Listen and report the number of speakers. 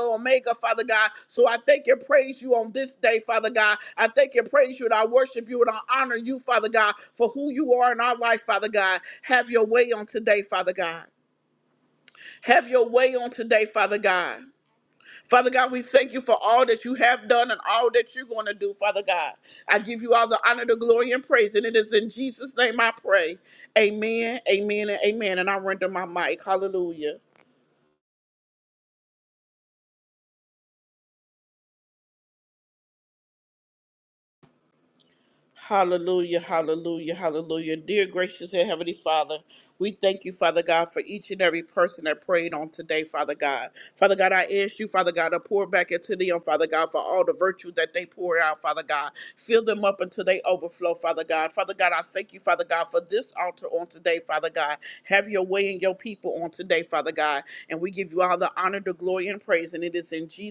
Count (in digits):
1